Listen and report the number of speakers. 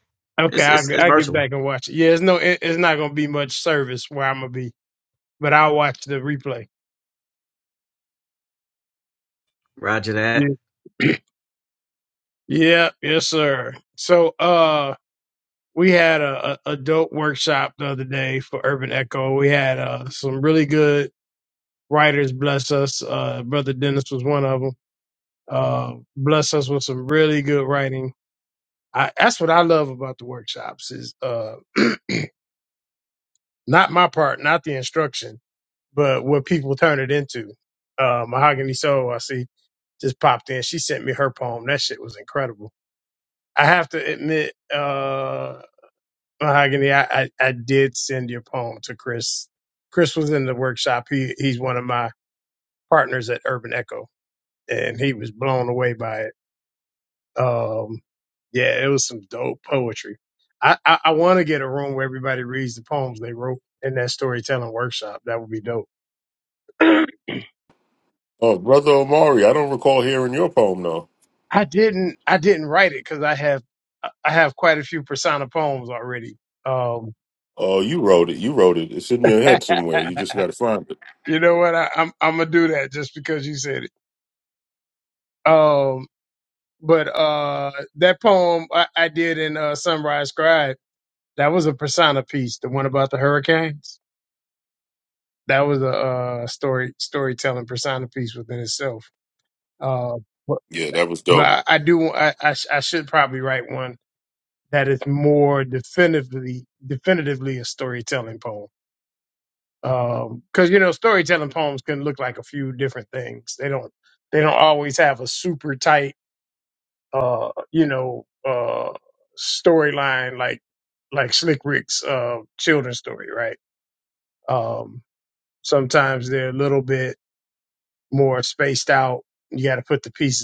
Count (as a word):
three